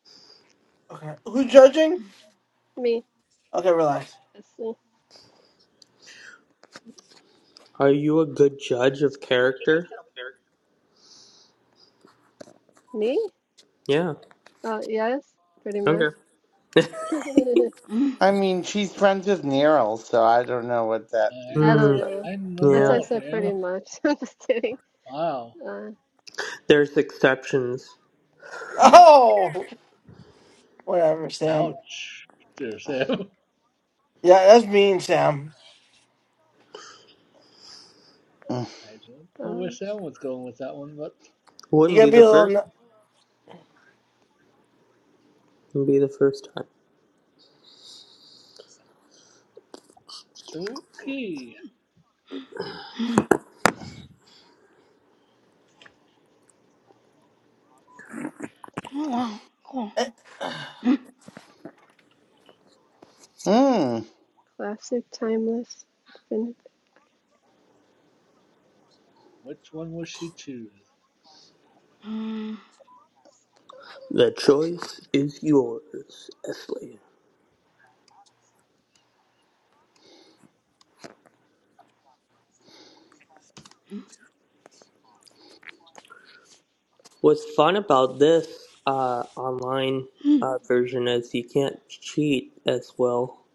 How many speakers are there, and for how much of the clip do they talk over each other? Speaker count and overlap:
6, about 3%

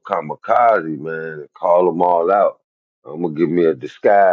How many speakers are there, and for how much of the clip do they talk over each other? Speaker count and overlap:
1, no overlap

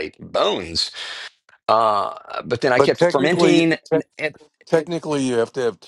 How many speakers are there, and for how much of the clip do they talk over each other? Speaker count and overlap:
2, about 17%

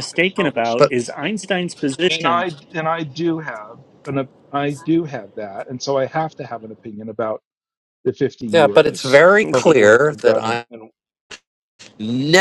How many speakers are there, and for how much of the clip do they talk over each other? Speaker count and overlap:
3, about 23%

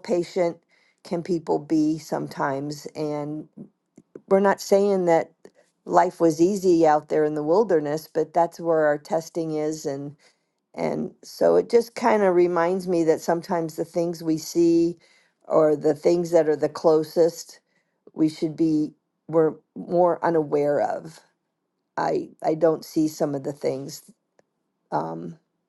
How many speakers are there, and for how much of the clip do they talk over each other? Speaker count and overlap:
1, no overlap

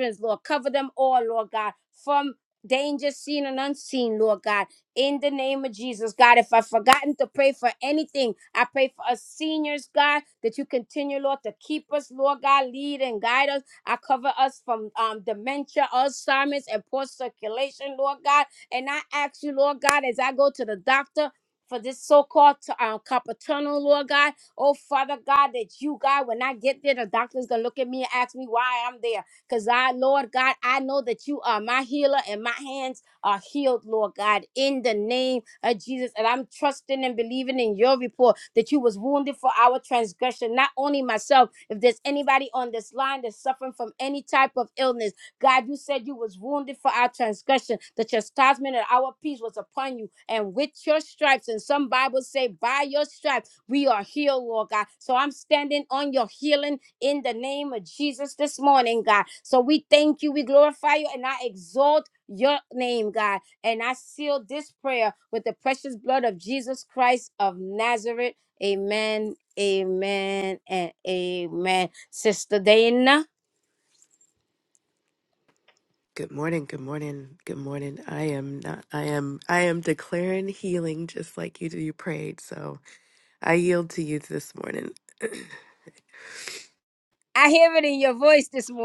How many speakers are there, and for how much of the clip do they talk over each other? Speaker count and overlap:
2, no overlap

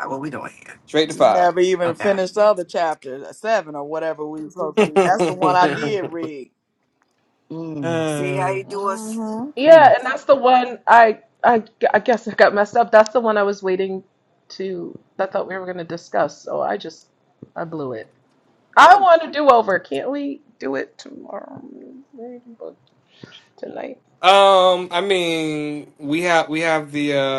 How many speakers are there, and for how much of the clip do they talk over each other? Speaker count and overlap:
4, about 8%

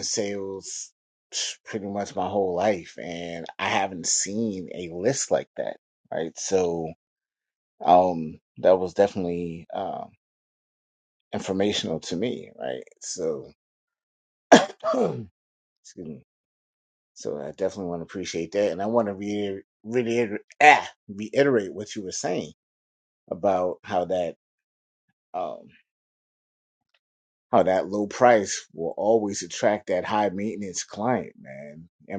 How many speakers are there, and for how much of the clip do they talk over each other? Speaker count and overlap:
1, no overlap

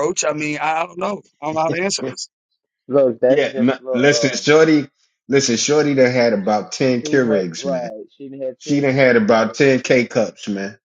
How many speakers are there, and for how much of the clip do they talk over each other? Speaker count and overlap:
3, about 26%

